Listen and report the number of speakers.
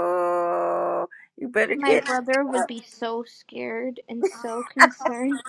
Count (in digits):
2